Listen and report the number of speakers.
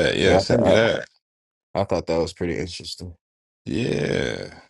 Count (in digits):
2